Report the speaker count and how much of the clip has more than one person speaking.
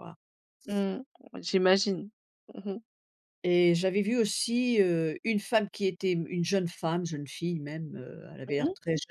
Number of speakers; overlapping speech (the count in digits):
2, about 3%